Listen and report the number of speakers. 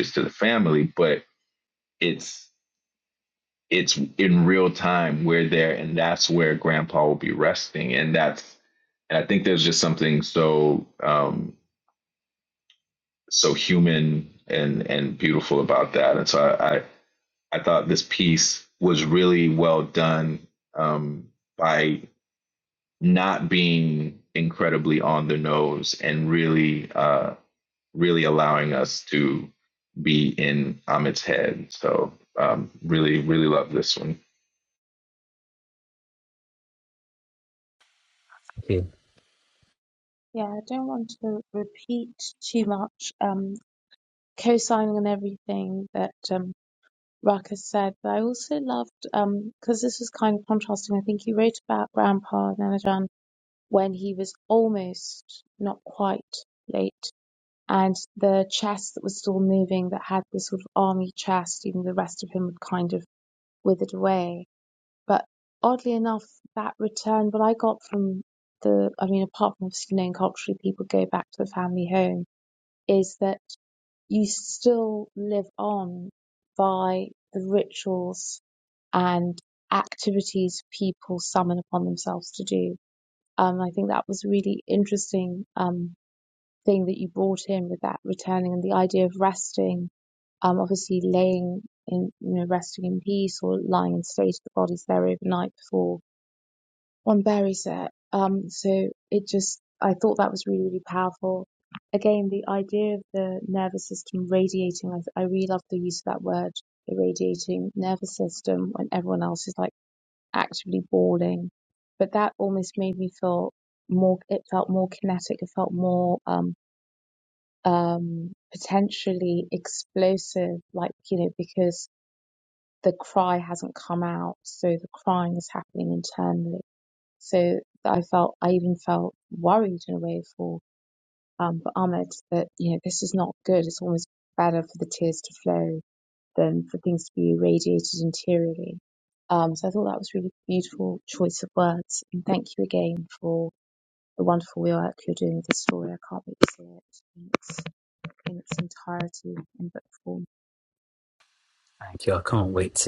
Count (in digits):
3